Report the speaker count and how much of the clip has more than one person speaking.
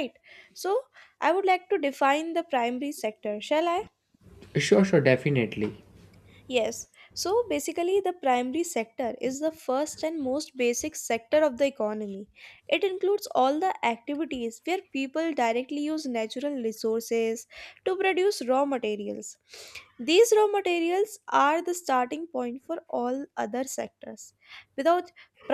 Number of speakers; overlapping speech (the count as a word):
two, no overlap